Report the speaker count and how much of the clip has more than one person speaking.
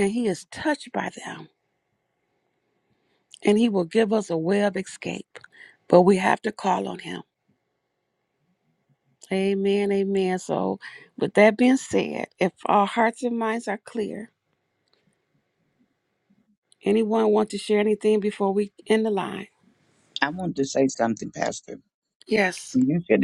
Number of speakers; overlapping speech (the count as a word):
two, no overlap